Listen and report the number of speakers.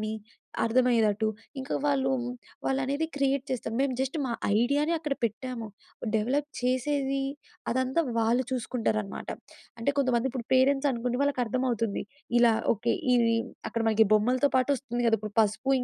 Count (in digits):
1